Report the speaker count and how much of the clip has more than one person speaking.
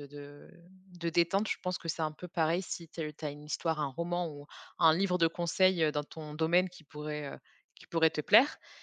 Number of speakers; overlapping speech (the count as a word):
one, no overlap